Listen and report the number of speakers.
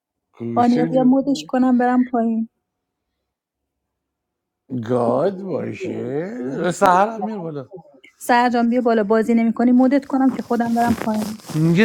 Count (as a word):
two